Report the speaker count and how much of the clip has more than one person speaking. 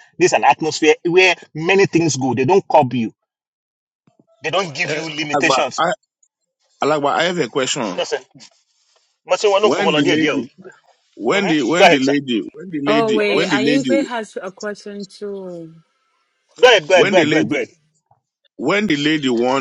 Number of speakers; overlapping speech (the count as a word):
three, about 22%